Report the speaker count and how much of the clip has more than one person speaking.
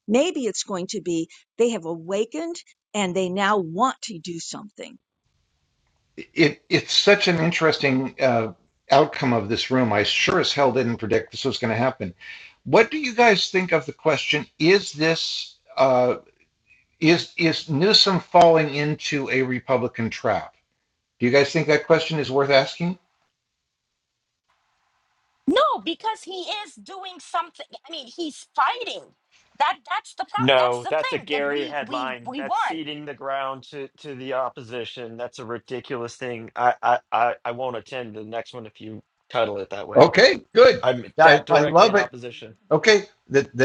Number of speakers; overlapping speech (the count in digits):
4, about 8%